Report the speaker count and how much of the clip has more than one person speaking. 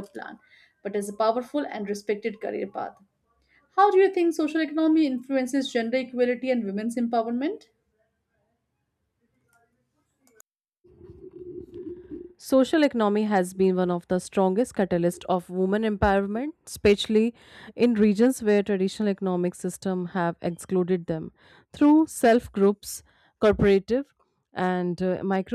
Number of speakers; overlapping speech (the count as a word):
two, no overlap